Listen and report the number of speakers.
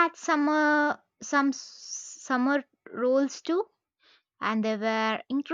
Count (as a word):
one